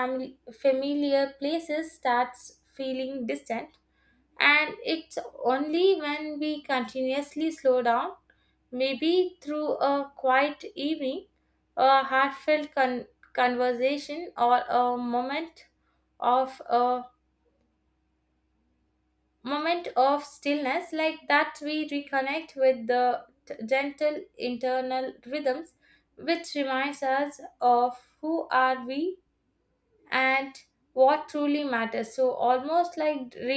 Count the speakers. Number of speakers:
1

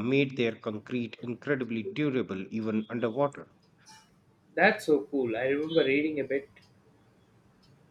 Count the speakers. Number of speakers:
2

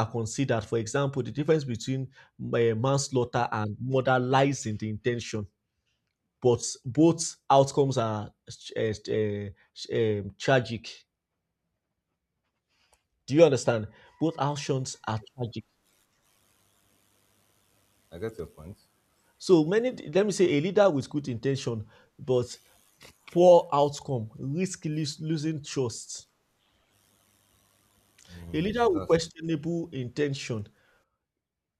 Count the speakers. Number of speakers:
2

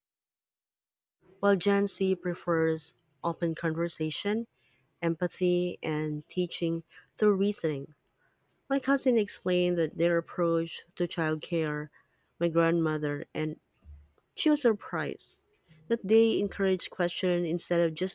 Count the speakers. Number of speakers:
1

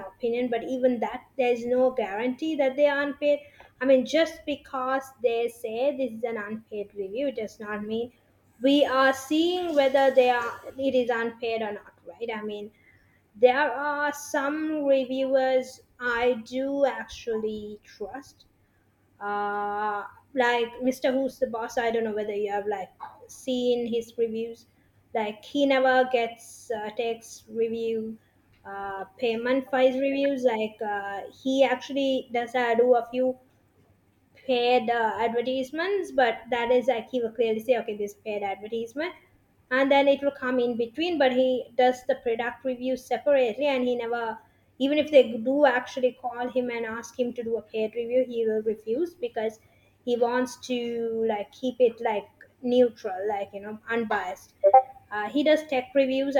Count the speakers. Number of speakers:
1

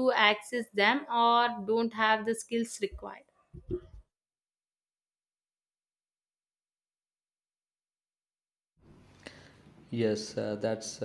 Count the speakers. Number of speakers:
2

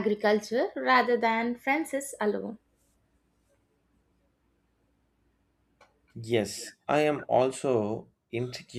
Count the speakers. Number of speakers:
2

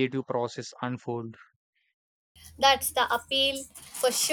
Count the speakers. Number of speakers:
2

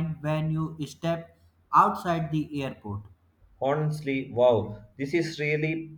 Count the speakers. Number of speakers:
2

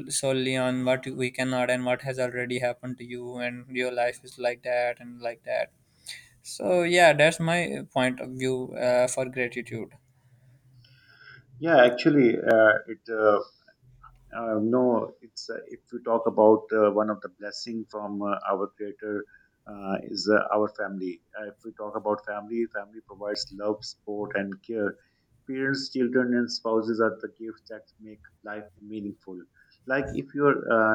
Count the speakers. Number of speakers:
2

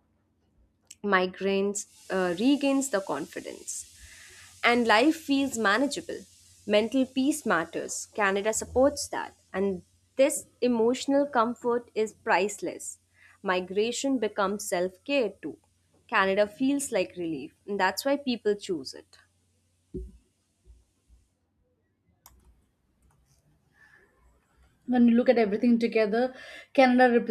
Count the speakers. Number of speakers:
2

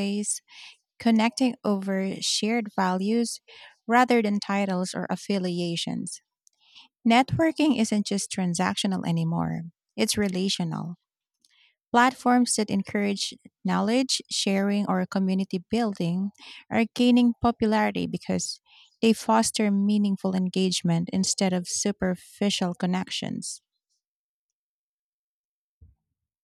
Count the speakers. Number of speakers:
1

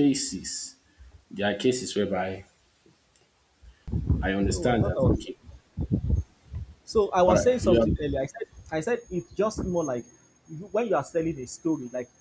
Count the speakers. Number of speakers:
2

